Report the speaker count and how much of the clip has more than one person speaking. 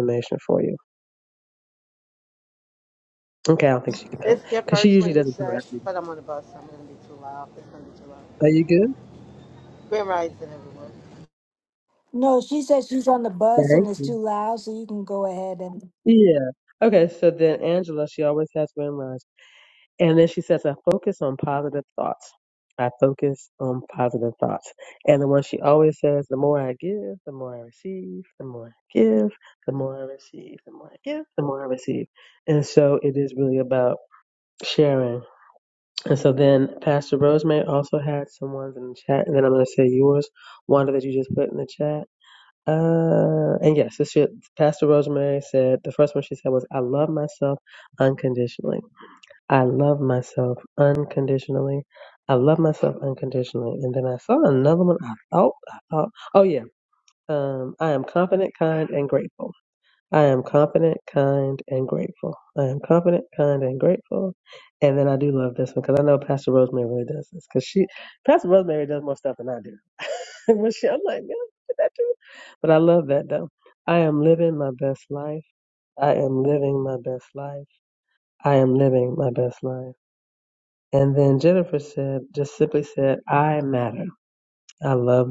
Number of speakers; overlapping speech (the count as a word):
three, about 3%